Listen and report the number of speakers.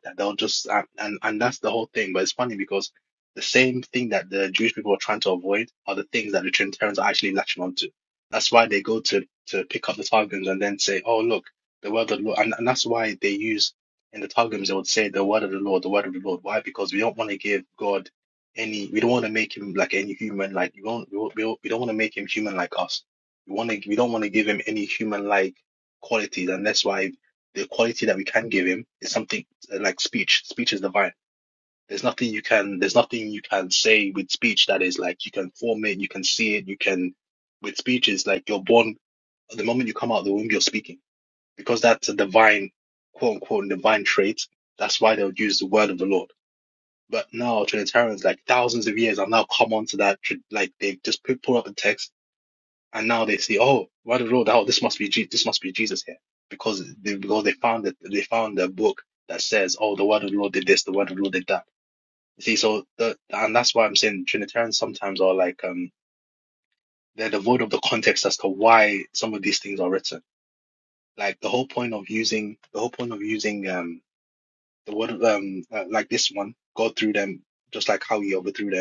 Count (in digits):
1